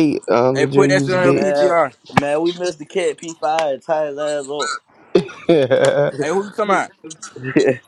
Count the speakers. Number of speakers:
3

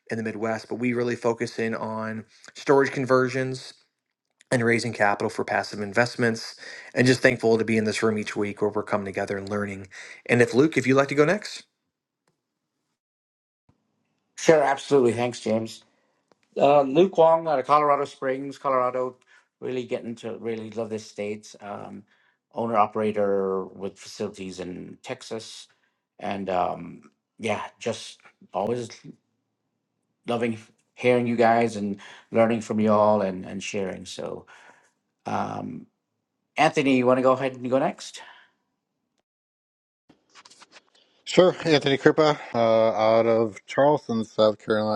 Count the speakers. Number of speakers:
3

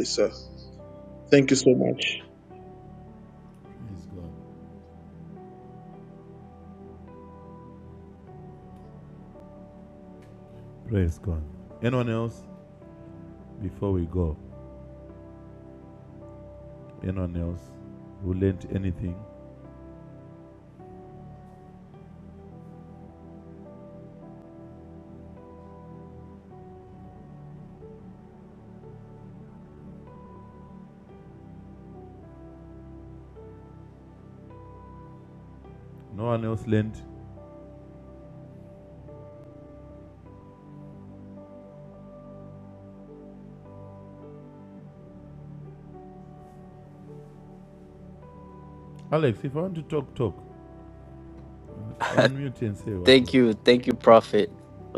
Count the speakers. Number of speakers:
3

